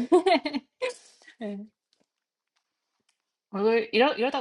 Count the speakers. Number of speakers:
1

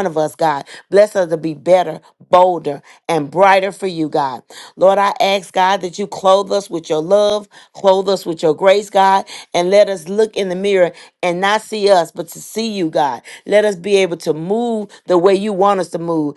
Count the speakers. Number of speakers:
1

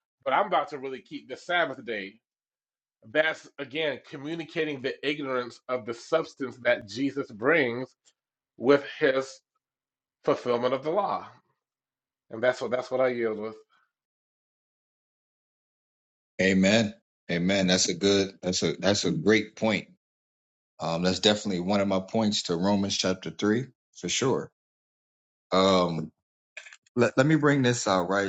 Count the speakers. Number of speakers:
2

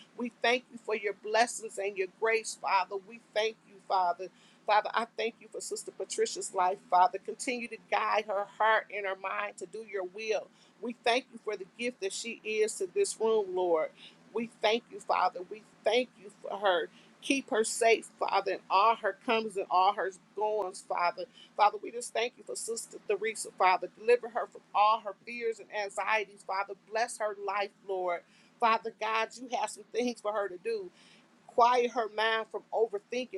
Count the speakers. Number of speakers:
1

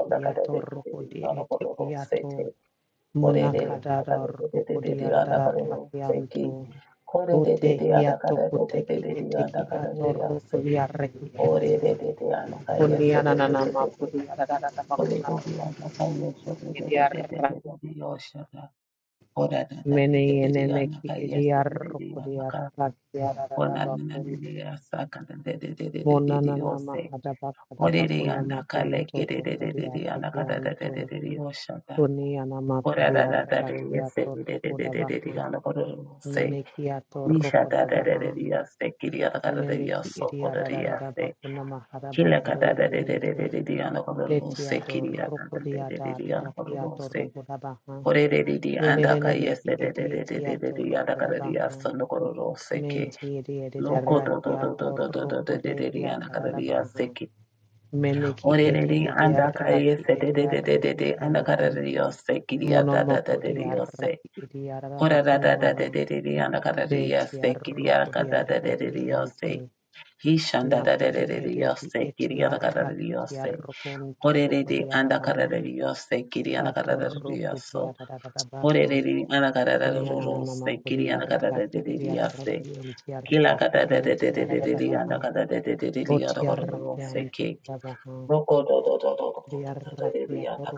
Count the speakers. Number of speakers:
2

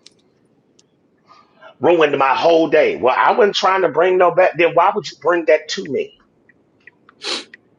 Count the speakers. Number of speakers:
1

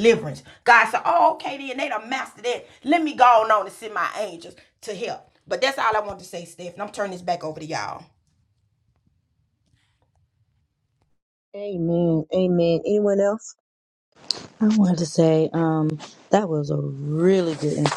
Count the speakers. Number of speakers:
3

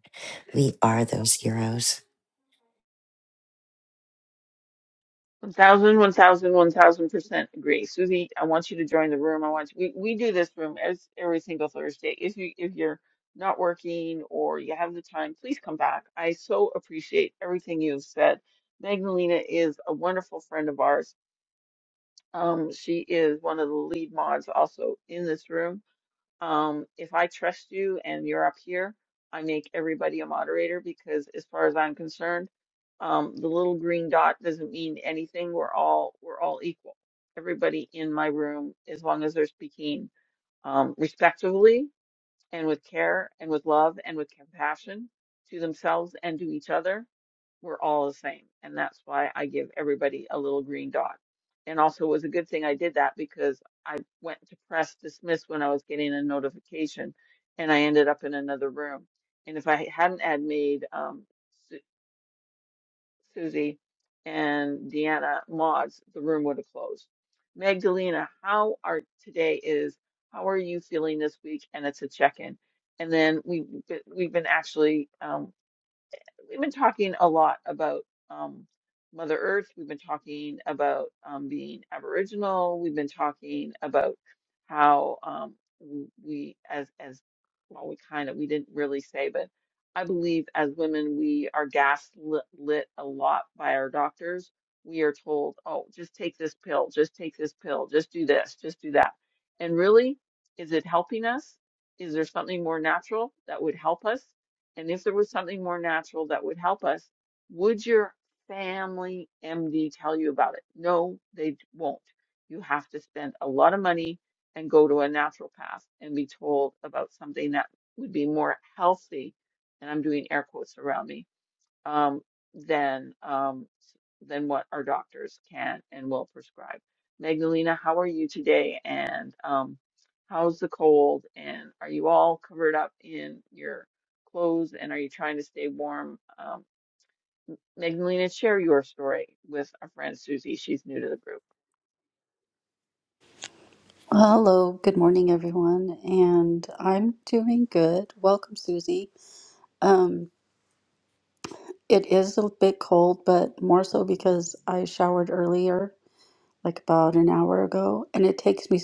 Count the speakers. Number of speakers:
3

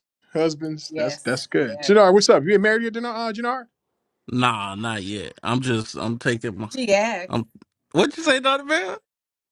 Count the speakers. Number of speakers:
3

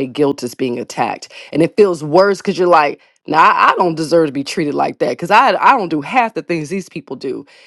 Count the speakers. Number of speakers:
1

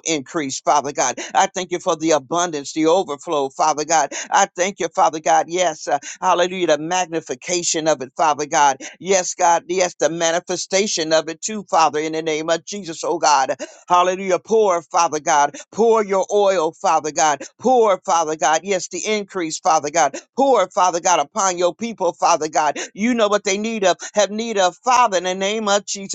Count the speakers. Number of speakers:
1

